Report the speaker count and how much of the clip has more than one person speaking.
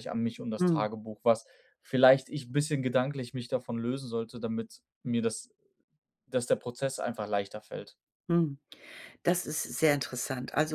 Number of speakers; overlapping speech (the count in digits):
2, about 2%